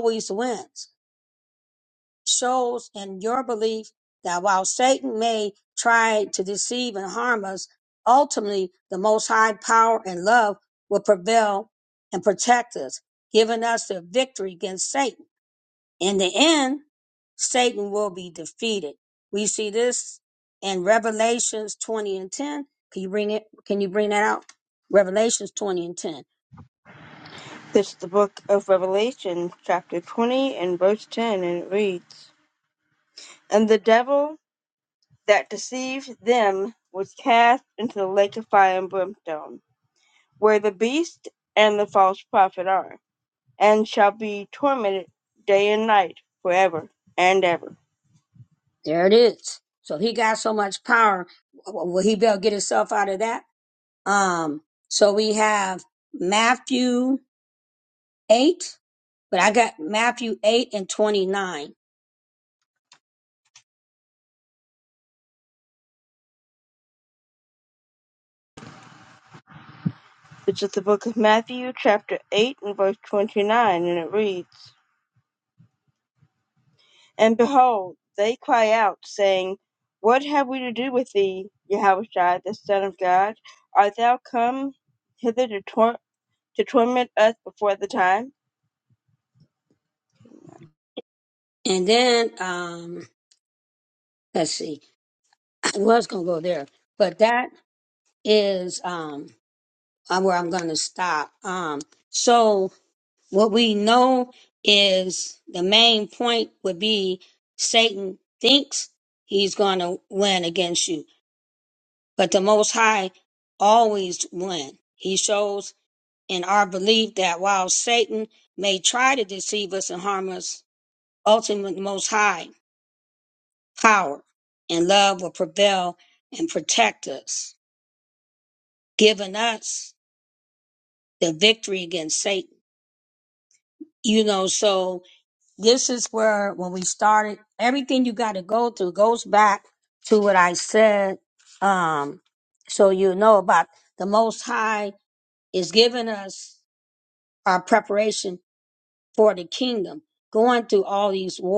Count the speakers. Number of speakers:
2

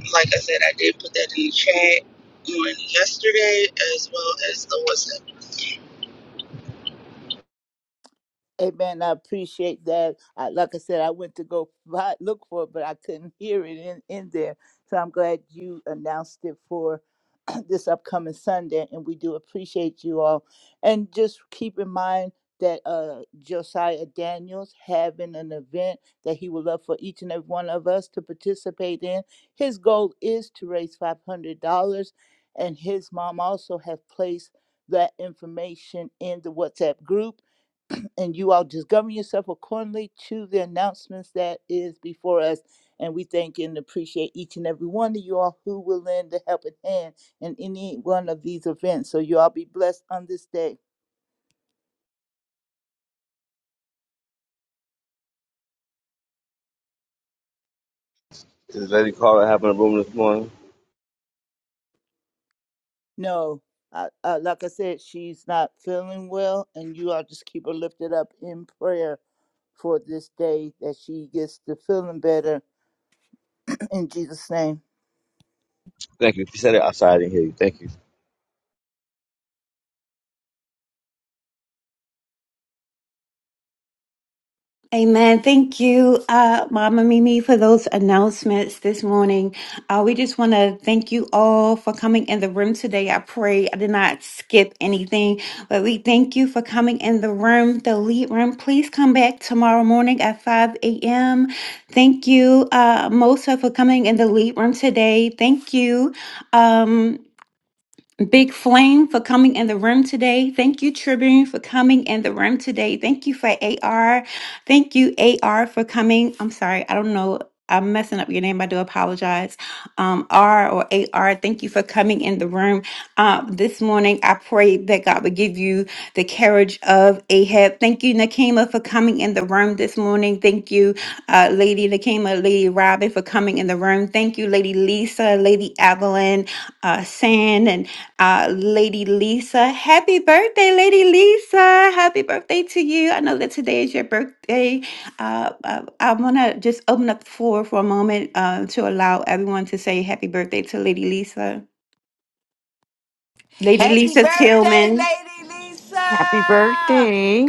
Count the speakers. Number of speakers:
6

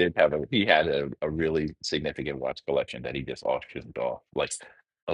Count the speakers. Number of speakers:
1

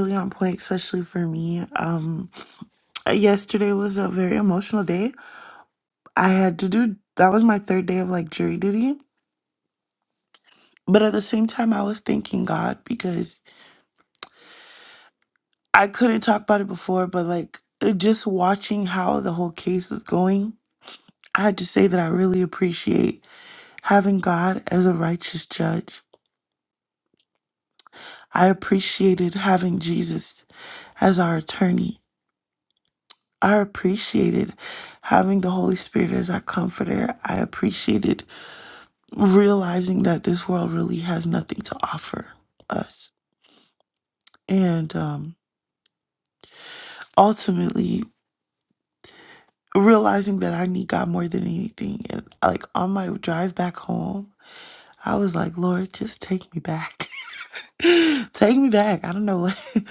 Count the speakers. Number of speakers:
1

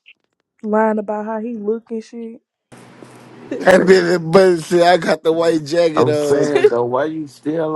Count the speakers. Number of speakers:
3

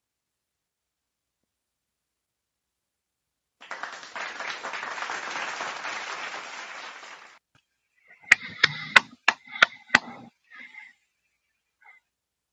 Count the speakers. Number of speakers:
0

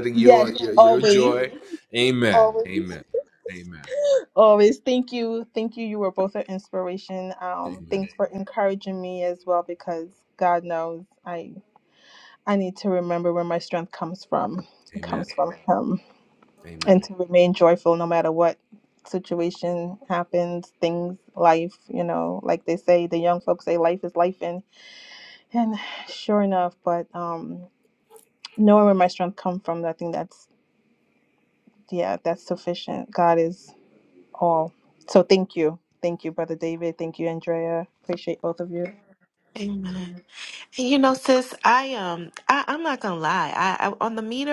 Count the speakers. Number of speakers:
3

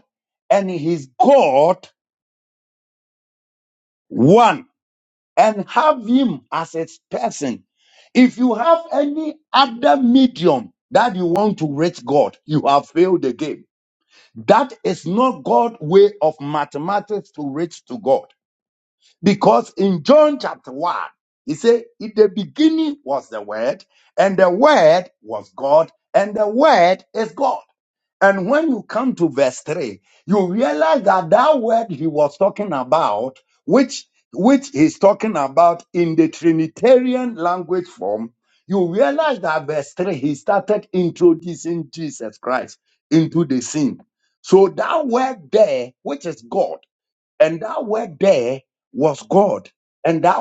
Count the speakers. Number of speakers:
1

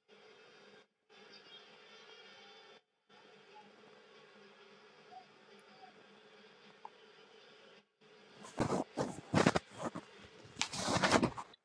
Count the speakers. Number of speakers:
0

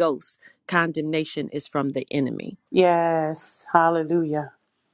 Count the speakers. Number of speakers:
2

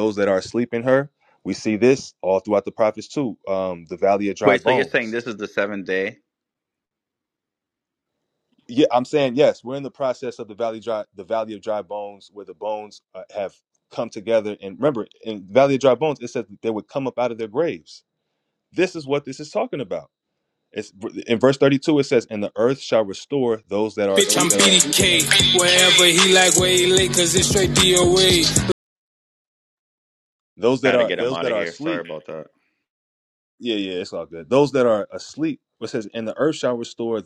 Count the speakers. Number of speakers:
3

